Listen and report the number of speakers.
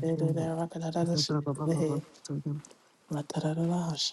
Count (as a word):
two